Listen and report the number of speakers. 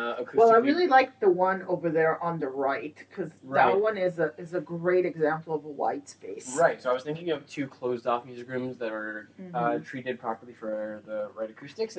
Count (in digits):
2